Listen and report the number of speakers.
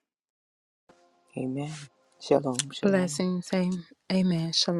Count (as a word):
two